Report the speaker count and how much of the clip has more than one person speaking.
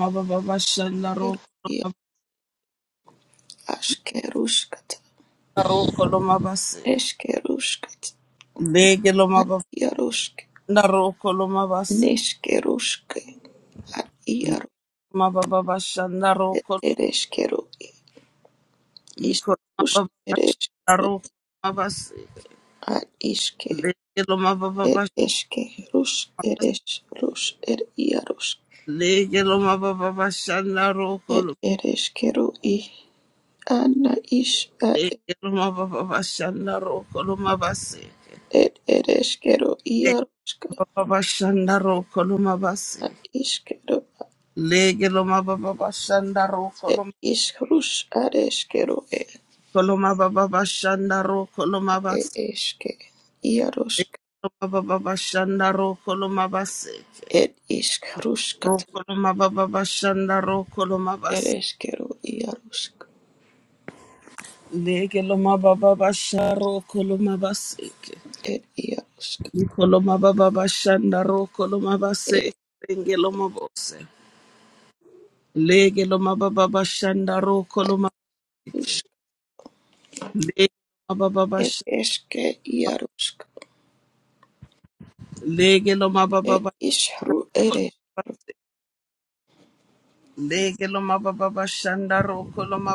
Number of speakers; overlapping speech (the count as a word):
two, about 4%